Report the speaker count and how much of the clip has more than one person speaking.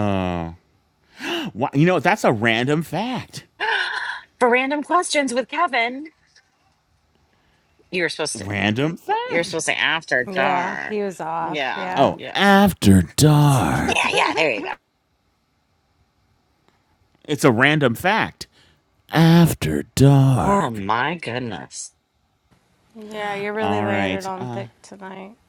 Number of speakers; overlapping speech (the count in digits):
3, about 15%